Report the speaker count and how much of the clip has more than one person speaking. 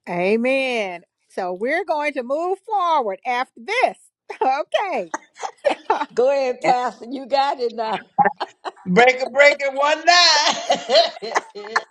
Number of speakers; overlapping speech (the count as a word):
three, no overlap